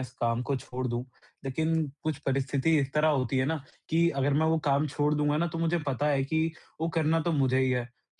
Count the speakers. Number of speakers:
one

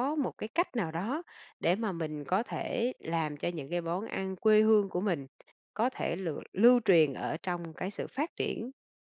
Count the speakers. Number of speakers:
one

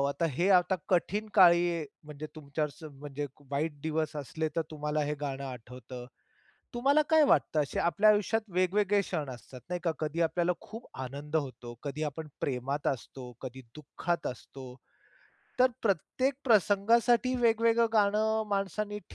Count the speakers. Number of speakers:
one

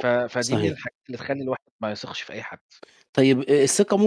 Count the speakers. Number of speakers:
two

